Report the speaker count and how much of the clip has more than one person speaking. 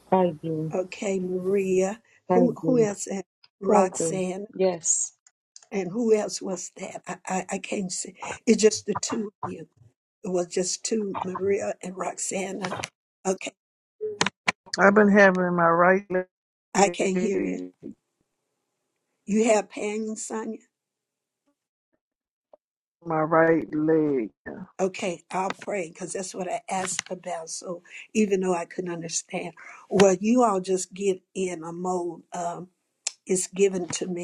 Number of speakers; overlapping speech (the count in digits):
3, about 3%